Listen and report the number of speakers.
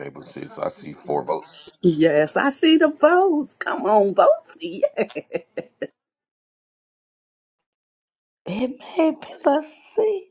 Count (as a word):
three